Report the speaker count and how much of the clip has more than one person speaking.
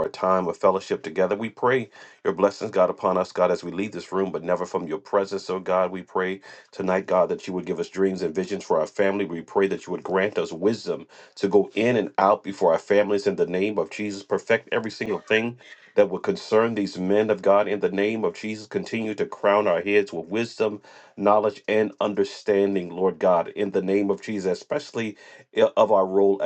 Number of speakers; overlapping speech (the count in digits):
1, no overlap